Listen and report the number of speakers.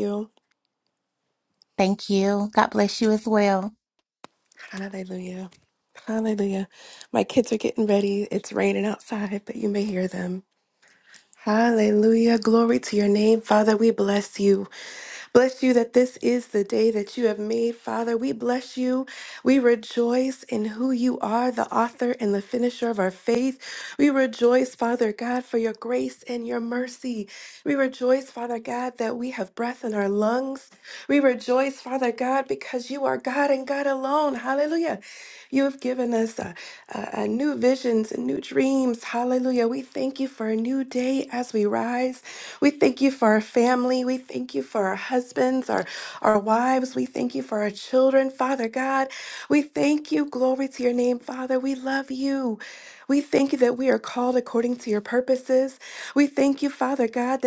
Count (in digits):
2